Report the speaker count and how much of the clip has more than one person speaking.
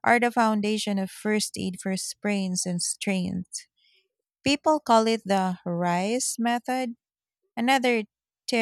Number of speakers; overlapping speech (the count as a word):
one, no overlap